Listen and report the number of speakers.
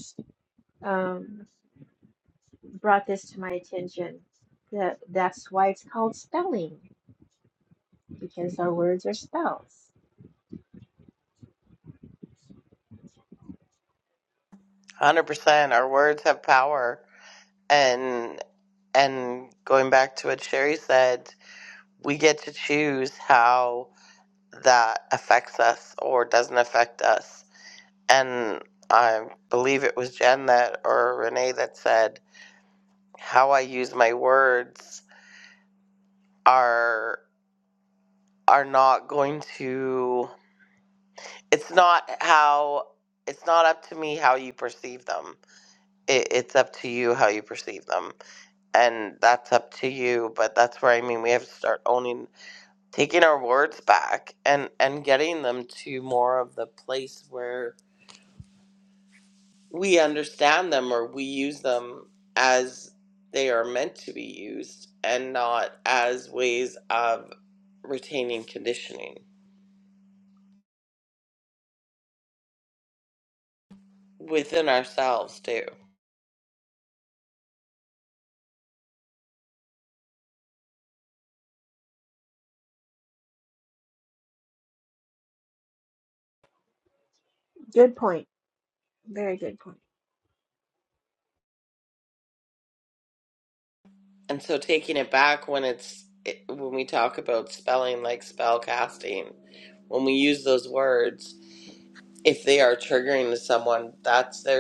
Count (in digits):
2